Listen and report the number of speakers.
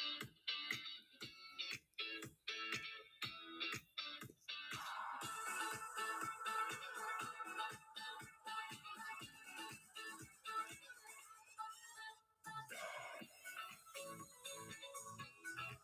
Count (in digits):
0